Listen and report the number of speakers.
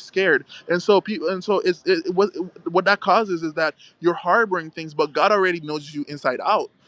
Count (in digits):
1